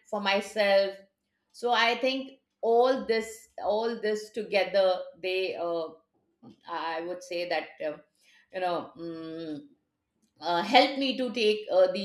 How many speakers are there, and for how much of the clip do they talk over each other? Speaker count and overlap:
1, no overlap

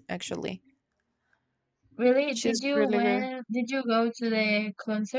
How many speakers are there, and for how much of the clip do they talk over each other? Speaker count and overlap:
2, about 17%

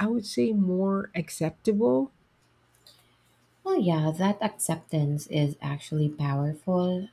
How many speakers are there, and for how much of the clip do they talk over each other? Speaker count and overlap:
2, no overlap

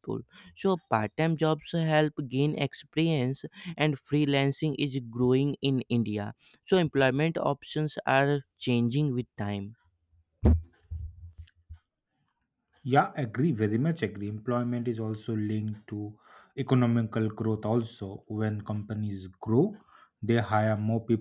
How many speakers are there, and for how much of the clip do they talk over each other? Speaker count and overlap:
2, no overlap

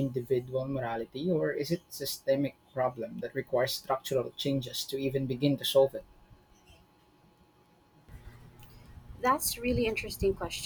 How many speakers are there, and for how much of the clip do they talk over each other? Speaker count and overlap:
2, no overlap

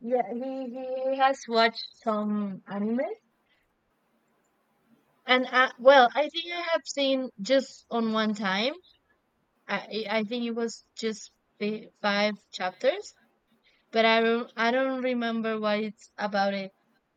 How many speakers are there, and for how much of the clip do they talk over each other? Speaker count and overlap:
1, no overlap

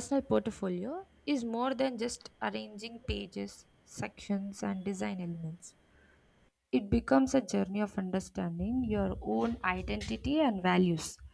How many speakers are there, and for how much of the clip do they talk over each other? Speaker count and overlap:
1, no overlap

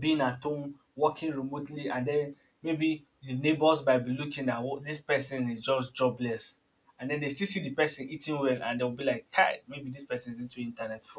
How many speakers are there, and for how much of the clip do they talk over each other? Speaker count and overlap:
1, no overlap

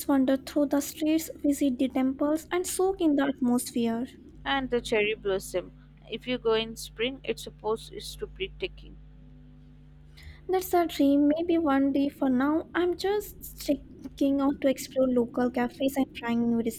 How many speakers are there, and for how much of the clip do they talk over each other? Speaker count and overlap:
2, no overlap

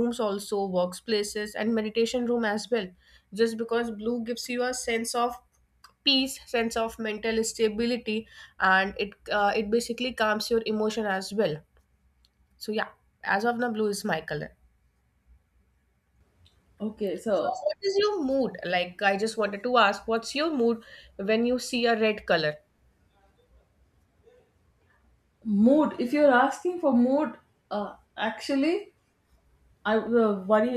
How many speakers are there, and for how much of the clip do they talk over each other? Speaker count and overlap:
2, under 1%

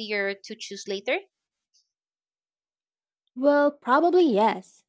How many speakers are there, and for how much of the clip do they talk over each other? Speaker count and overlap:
2, no overlap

